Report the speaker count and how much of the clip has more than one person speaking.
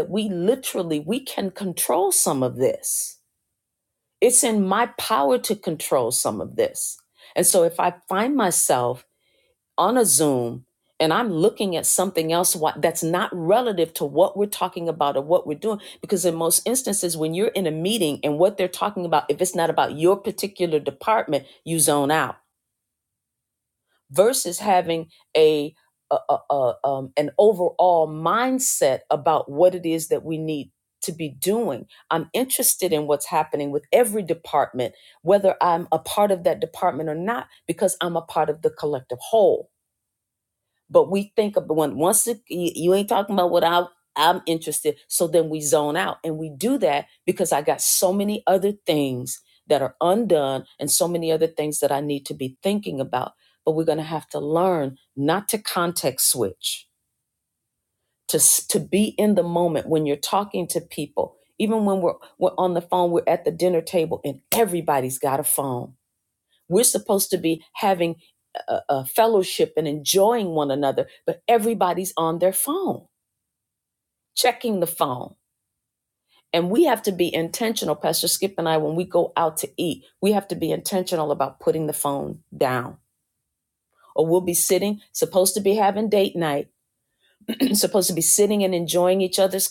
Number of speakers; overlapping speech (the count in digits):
1, no overlap